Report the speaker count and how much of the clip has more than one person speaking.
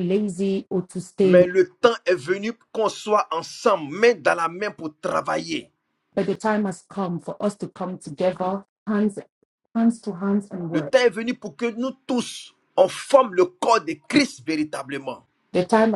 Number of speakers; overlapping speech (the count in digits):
2, about 3%